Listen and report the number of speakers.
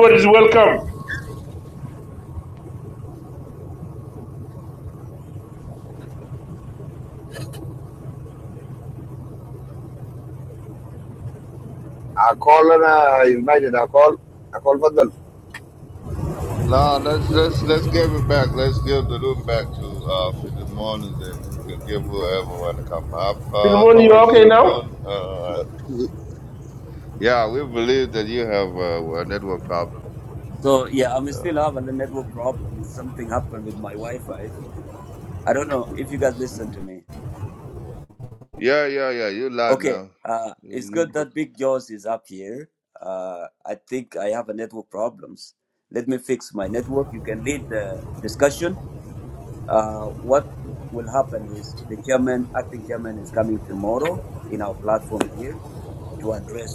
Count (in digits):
4